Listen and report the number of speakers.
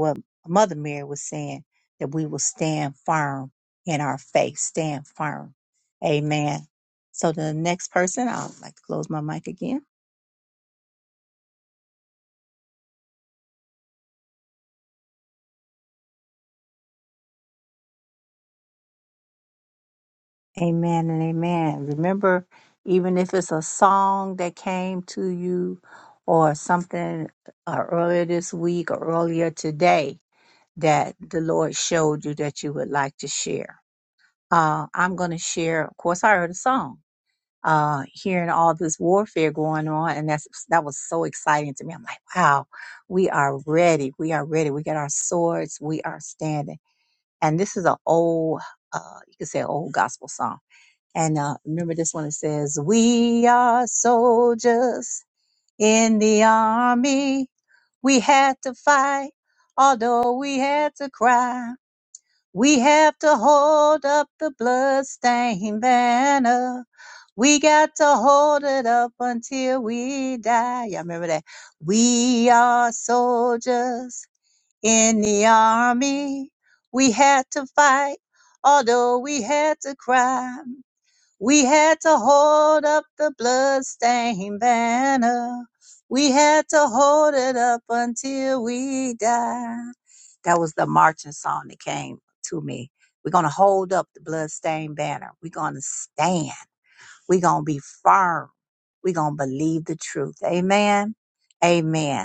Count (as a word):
one